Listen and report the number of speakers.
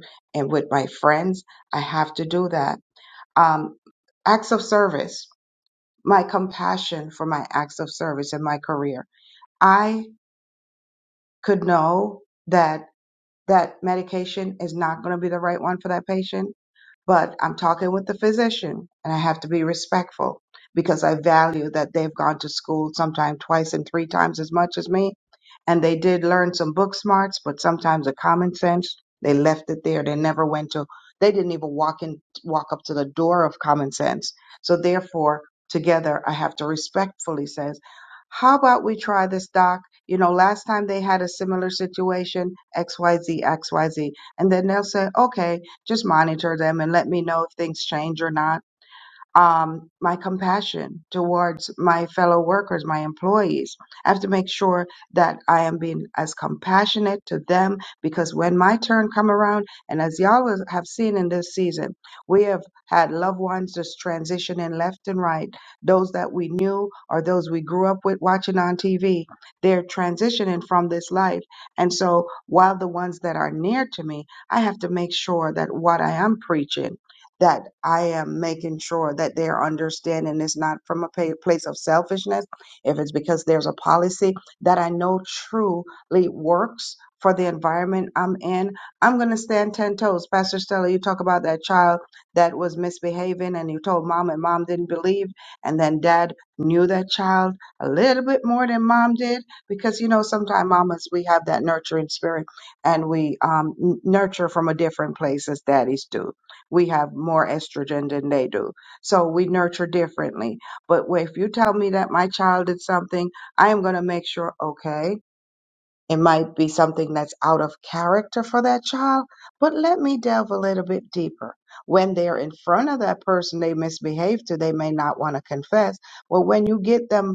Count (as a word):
one